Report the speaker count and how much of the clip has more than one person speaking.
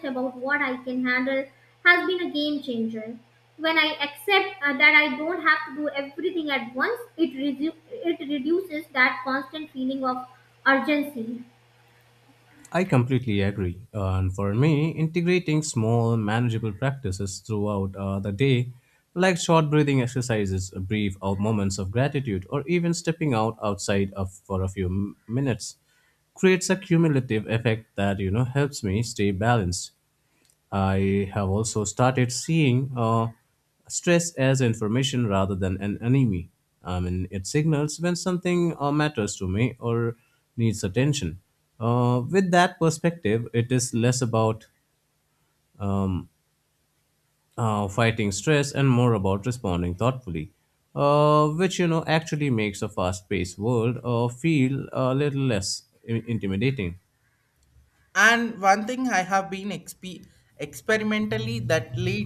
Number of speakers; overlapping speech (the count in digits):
3, no overlap